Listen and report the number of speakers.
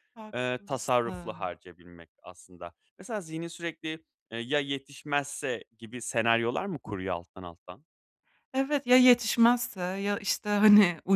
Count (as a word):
two